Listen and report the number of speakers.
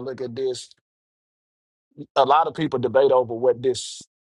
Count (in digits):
1